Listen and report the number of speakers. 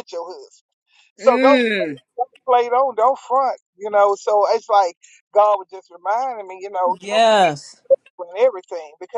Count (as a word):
two